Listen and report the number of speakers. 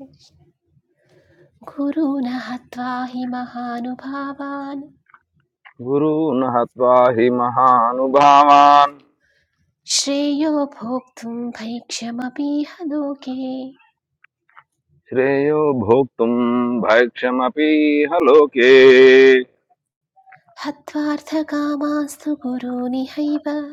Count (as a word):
two